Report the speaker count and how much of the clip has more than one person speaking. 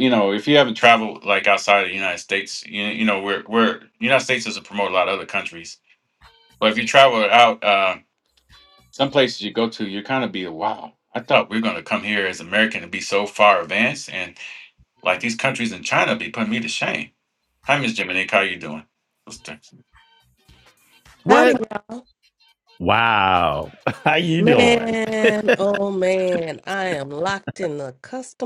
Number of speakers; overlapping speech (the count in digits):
3, about 3%